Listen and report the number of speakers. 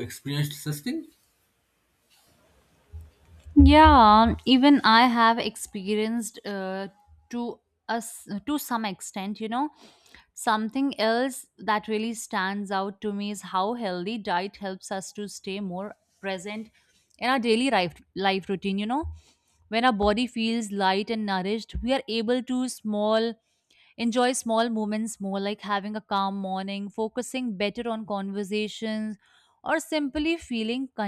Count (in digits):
2